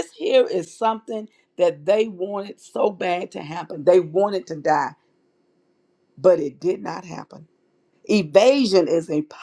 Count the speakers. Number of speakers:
1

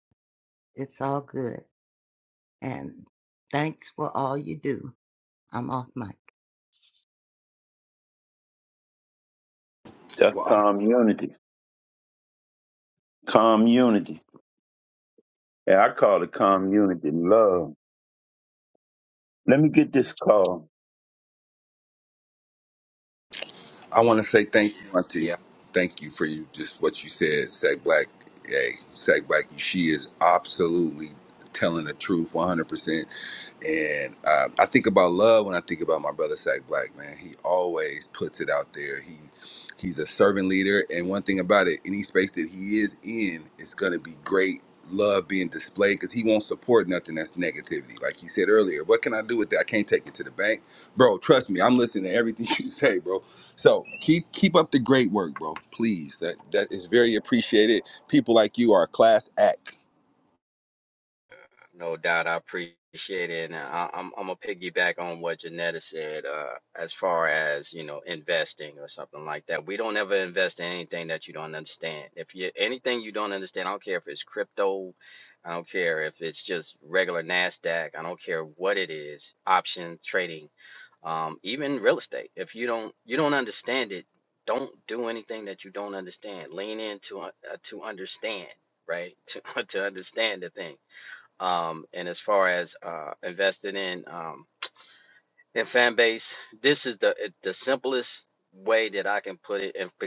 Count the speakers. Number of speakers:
4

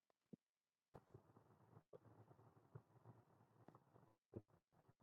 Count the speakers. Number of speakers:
0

